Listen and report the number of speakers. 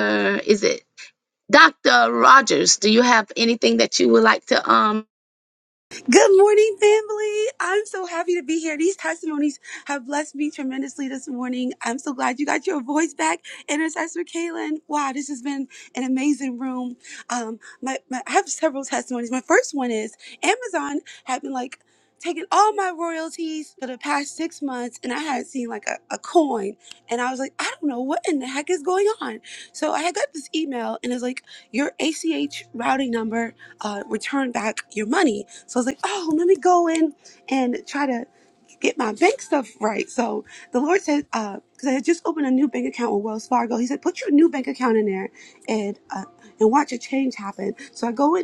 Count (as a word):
two